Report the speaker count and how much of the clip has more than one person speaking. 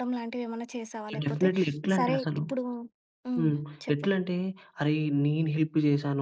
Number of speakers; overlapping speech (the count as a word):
two, about 25%